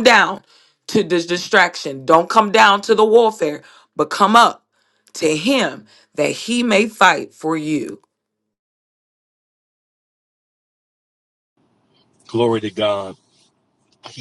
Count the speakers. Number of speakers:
two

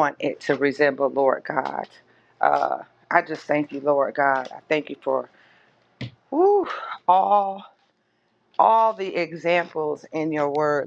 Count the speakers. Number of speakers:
one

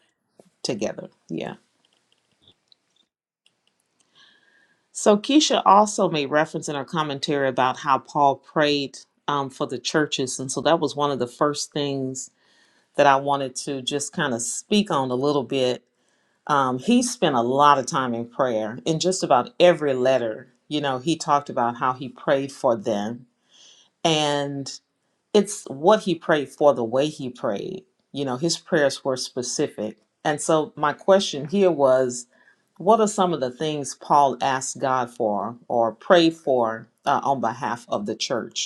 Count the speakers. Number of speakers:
one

